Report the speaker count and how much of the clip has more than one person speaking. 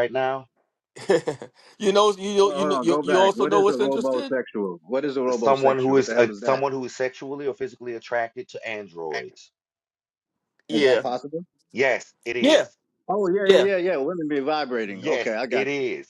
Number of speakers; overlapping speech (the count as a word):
three, about 29%